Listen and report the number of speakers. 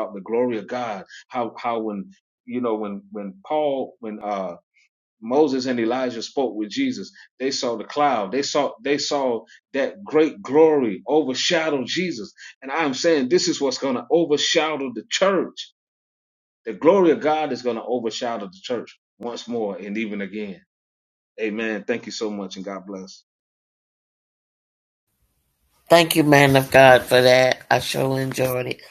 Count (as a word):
two